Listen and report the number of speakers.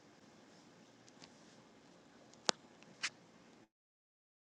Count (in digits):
0